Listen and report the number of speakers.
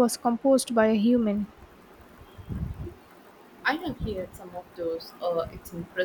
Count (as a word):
two